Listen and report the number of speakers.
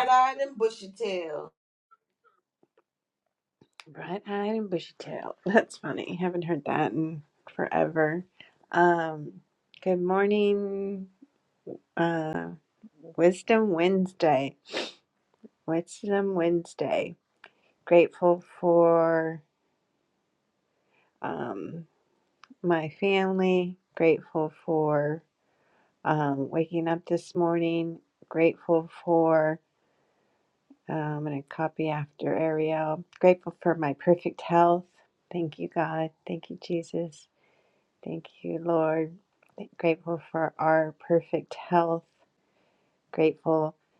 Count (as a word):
two